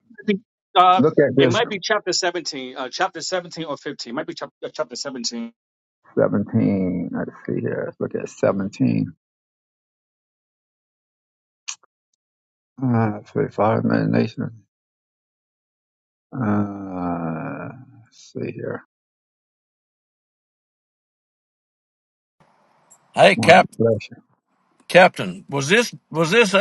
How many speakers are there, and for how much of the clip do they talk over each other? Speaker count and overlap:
three, about 3%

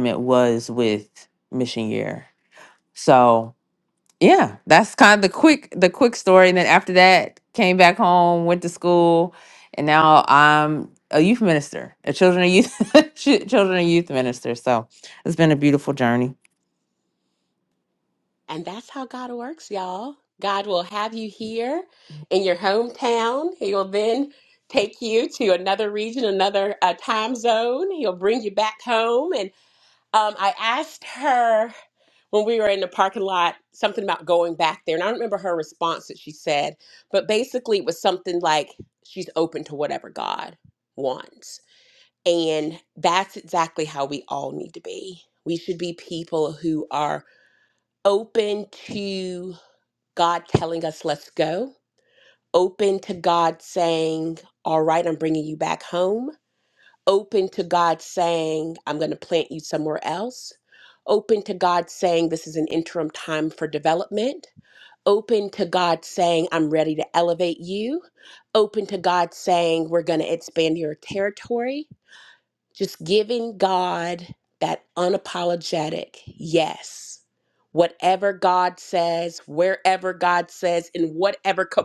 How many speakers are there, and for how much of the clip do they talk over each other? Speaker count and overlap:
two, no overlap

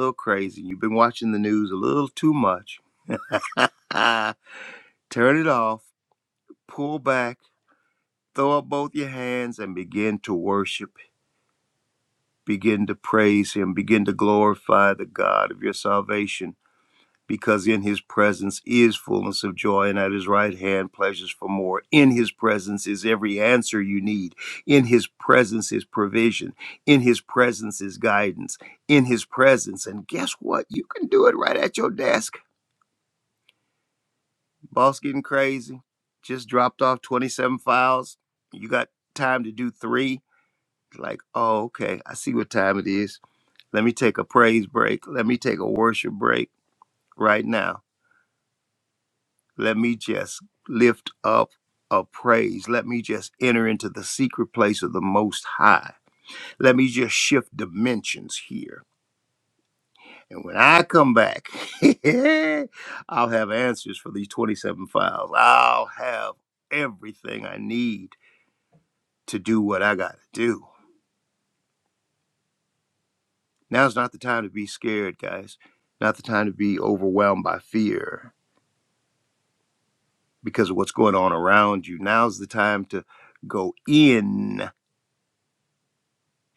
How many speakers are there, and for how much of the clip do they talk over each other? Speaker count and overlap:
one, no overlap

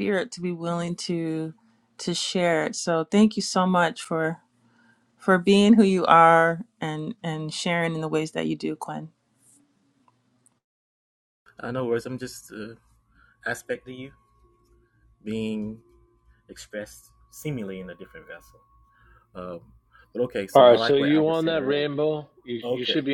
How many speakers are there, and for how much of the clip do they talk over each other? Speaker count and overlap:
three, about 8%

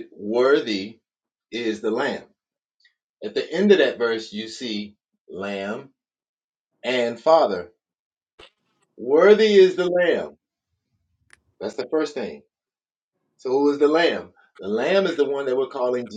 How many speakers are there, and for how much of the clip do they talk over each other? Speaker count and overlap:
one, no overlap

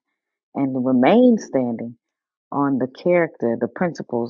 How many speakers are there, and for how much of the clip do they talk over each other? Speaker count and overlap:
one, no overlap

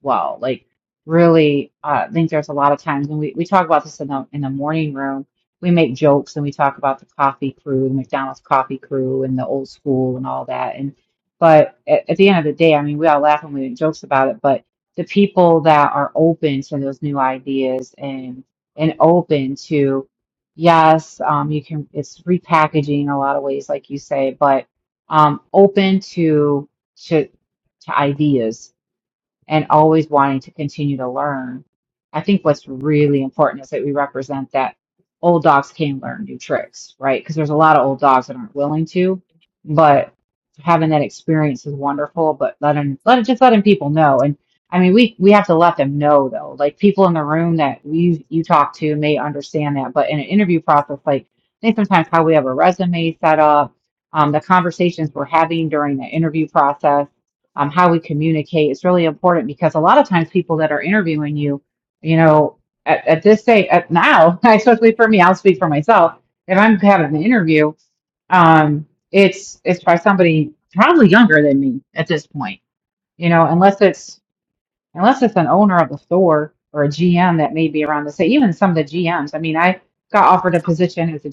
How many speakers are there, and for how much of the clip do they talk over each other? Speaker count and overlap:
one, no overlap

